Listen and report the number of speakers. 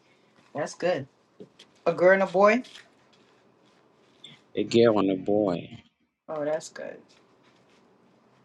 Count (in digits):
2